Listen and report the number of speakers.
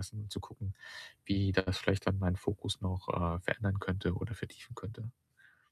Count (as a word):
one